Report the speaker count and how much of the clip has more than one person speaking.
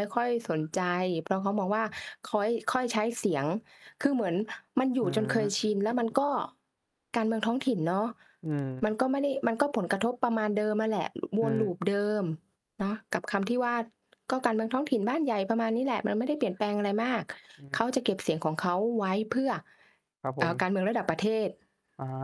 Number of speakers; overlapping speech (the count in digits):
2, about 3%